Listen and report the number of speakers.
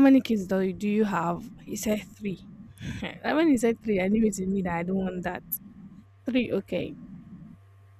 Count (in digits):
1